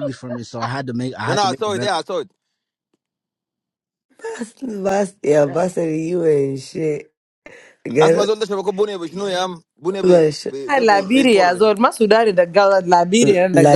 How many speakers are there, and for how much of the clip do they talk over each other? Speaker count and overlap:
four, about 18%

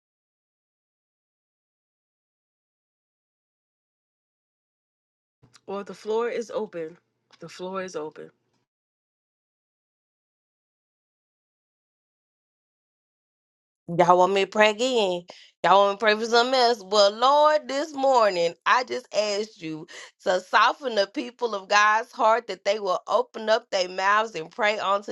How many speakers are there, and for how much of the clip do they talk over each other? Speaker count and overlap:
two, no overlap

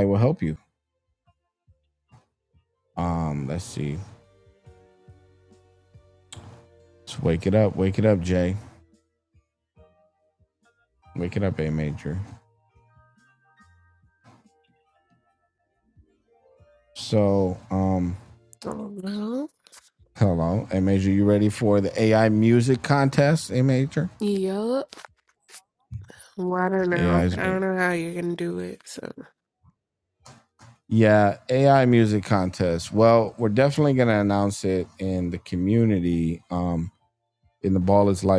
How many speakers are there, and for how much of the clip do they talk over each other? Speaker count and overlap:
two, about 2%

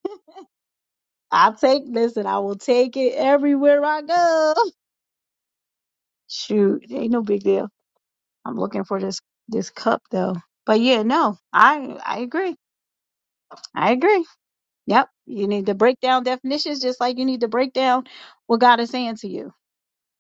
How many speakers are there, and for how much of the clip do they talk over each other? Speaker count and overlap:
one, no overlap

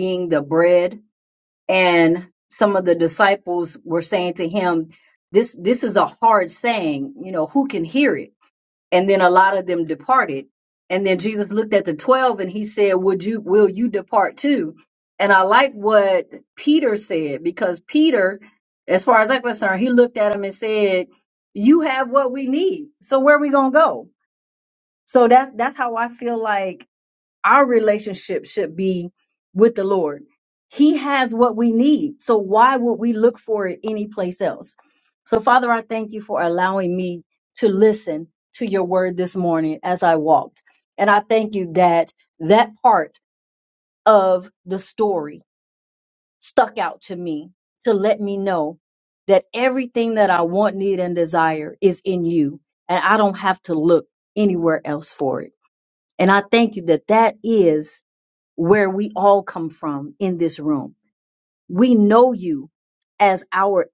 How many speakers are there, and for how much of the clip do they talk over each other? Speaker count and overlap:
one, no overlap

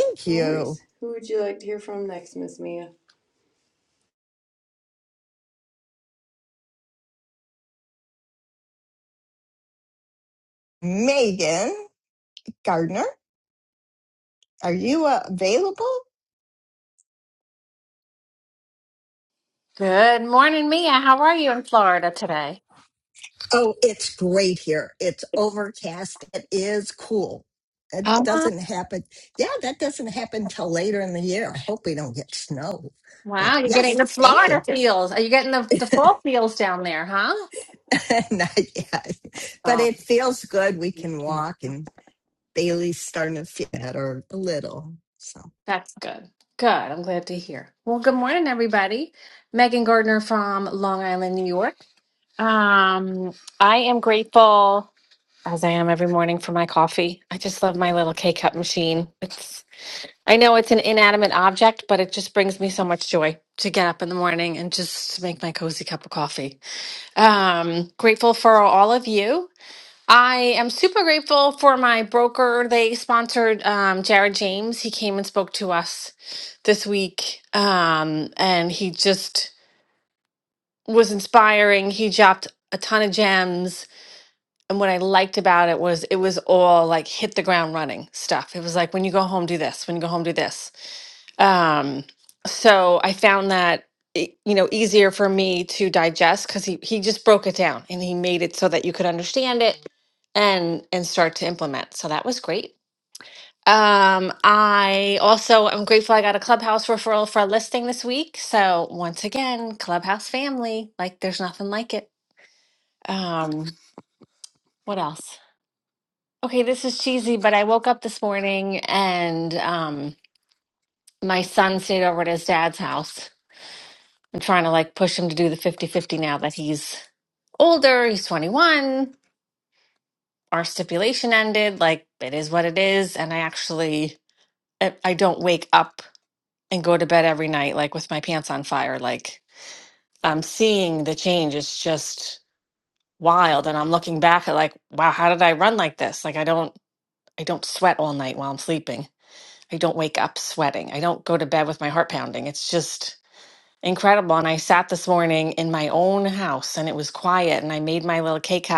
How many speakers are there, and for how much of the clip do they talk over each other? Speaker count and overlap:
three, about 1%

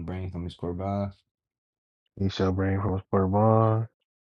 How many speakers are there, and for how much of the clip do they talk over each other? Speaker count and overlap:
two, no overlap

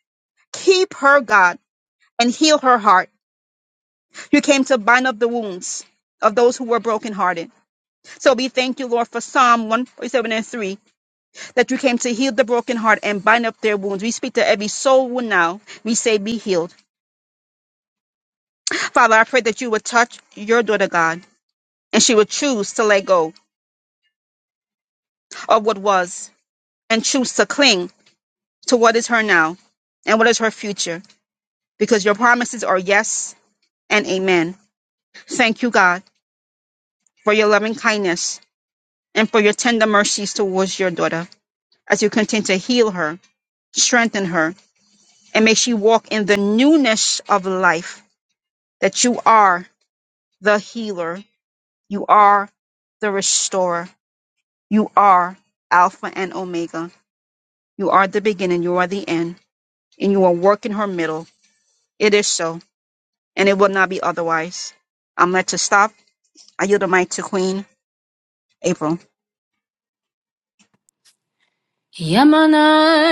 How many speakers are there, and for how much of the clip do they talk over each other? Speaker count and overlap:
two, no overlap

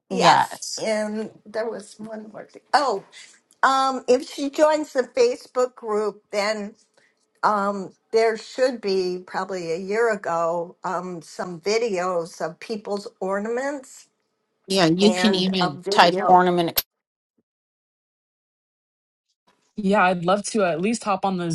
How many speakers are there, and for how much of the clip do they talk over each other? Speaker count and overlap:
three, about 8%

